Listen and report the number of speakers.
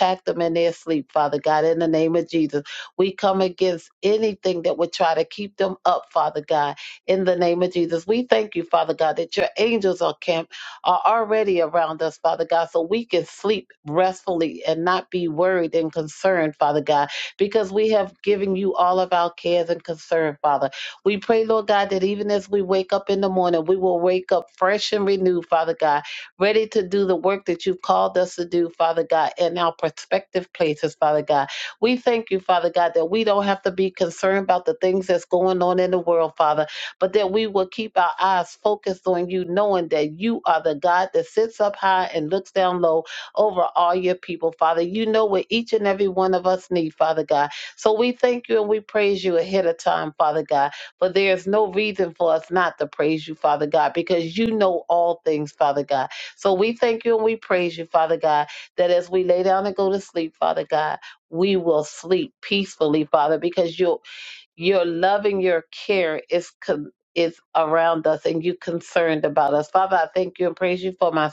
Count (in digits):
1